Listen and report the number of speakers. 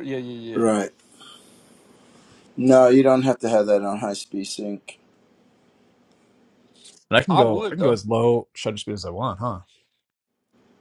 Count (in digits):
3